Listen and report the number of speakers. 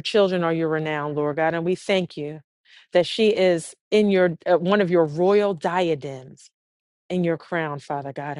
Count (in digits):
1